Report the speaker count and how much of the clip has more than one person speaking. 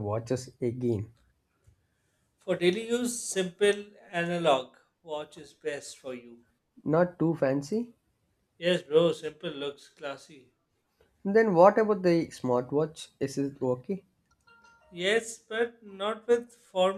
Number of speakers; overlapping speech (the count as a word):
two, no overlap